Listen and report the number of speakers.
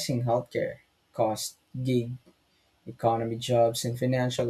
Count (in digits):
1